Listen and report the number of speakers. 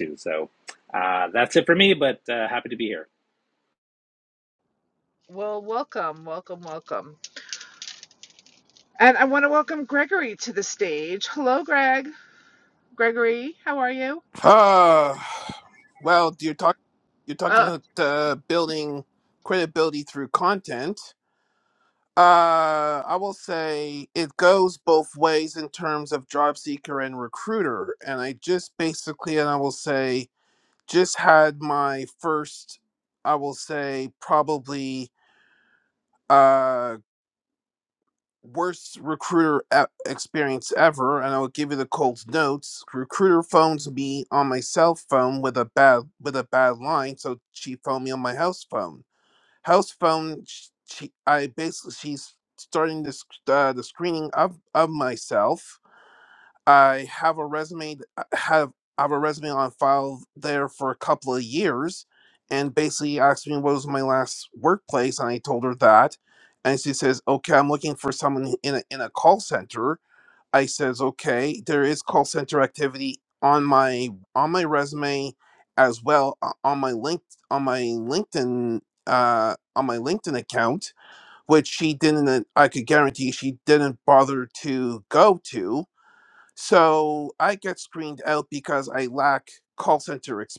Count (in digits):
3